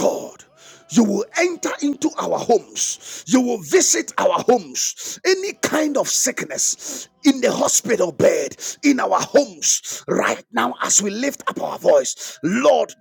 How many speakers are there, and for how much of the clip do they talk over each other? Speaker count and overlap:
1, no overlap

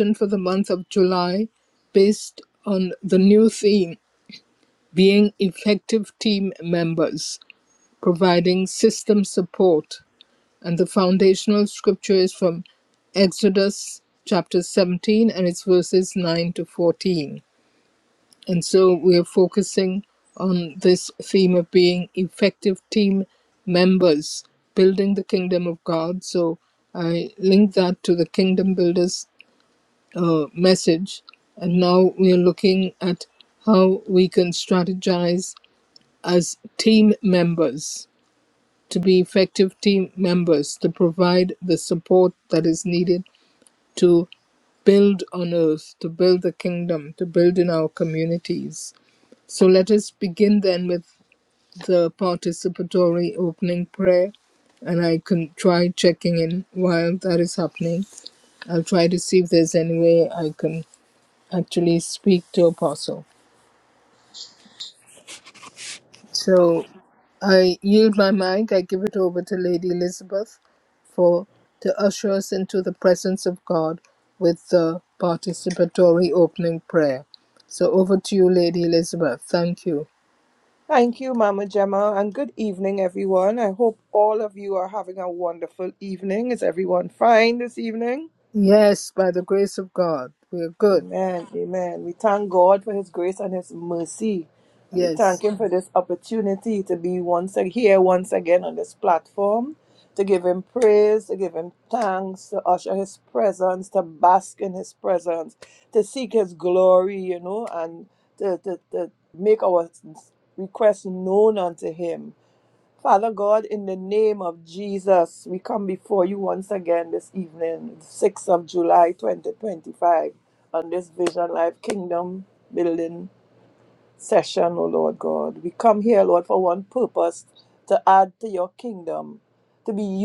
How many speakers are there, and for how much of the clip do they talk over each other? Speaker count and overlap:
2, under 1%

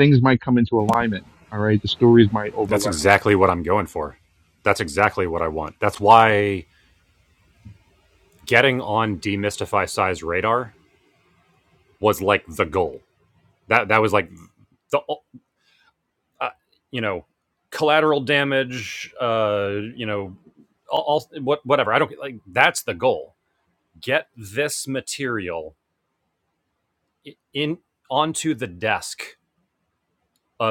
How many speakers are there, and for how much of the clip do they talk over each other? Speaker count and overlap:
2, about 1%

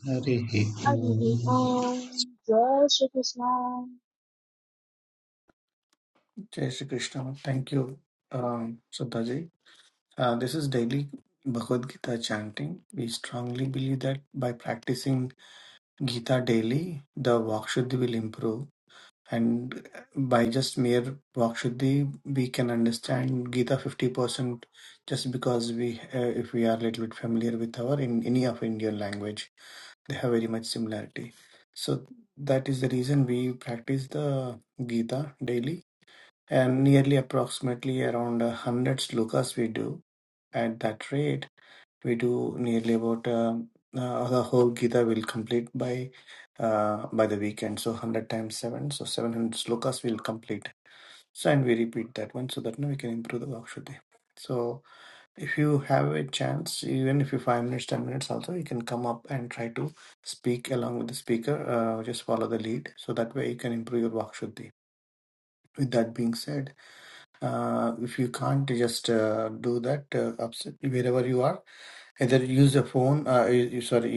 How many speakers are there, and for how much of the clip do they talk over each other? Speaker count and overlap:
3, about 1%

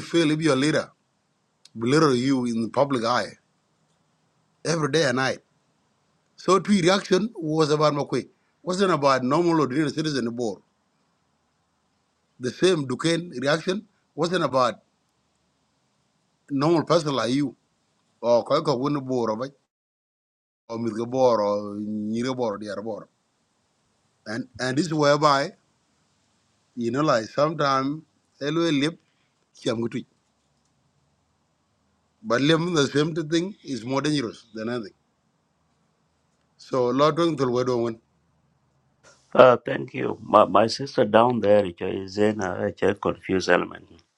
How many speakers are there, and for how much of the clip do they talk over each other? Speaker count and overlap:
2, no overlap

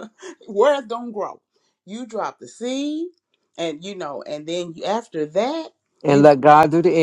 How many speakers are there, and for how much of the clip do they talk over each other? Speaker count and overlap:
2, no overlap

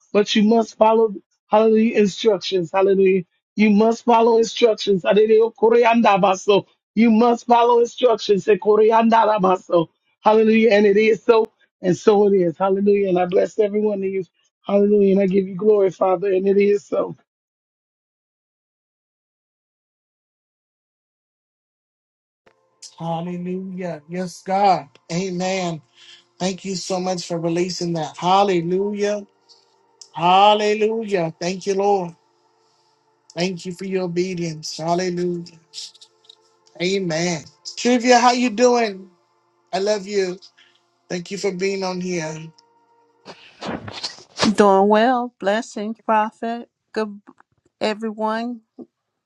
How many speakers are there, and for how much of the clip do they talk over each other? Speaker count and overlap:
3, no overlap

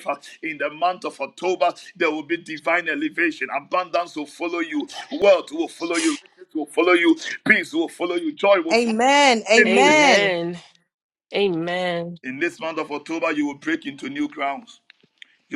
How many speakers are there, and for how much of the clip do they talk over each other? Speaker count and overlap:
3, about 6%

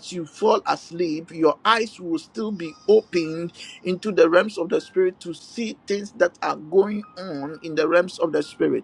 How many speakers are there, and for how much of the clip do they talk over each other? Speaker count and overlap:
1, no overlap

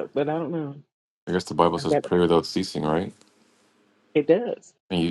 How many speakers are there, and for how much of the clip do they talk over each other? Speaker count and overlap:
2, about 6%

